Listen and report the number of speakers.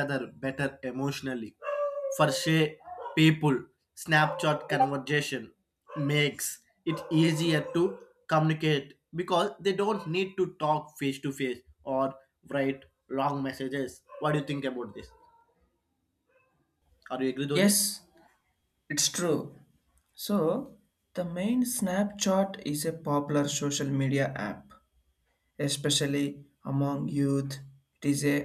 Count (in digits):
2